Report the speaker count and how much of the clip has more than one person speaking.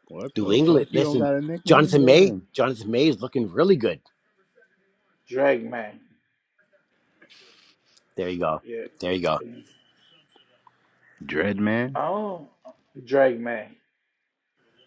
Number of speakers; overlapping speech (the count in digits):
3, about 11%